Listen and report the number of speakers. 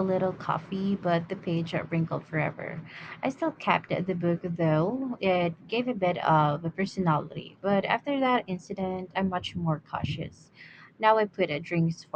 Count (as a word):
one